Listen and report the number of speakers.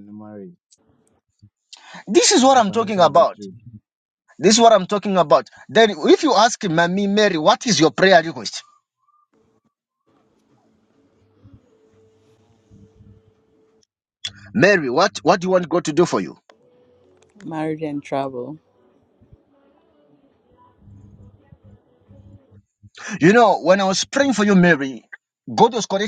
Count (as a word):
three